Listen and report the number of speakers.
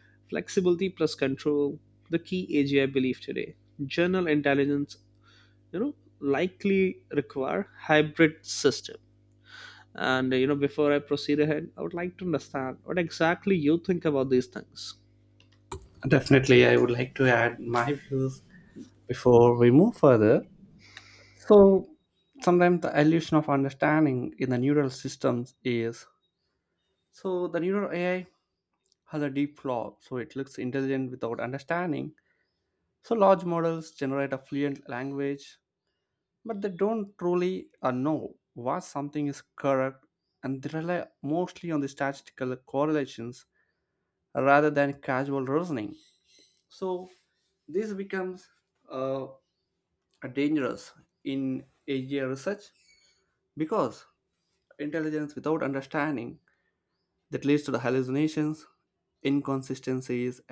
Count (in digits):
2